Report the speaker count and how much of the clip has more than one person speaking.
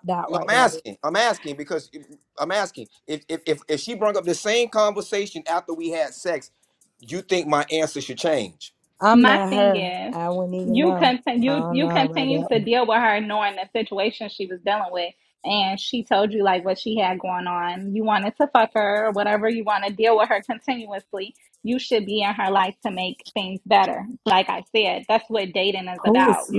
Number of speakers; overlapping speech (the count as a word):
three, about 14%